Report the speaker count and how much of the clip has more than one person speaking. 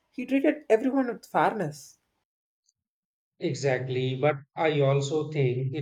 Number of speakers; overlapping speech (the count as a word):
two, no overlap